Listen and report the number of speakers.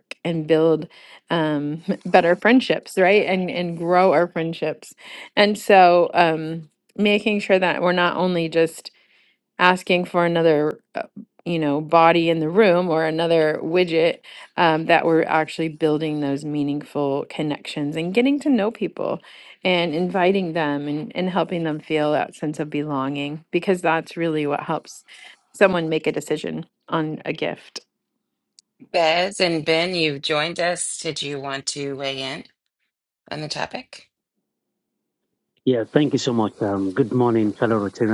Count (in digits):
3